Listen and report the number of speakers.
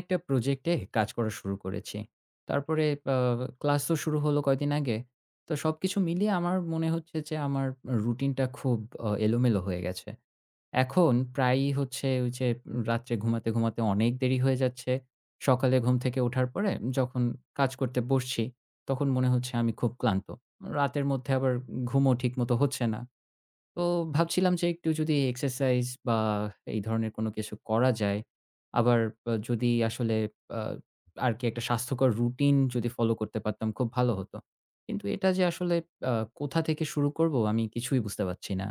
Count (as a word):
one